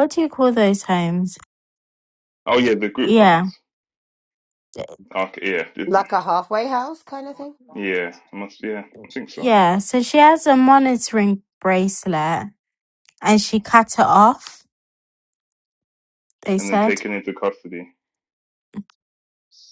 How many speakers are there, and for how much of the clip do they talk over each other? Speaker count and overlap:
three, about 5%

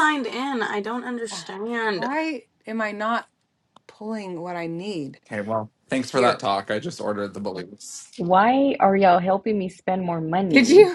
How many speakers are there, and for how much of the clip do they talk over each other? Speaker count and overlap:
four, about 6%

